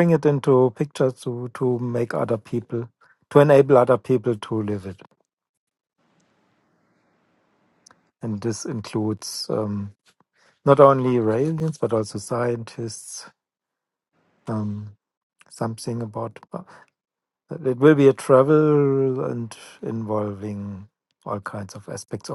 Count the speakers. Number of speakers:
1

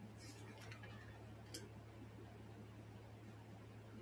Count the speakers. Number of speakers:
0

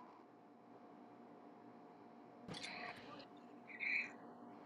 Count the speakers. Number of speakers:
0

